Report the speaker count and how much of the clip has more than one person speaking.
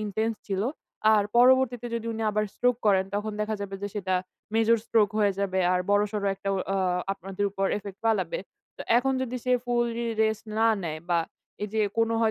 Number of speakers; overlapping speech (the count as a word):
one, no overlap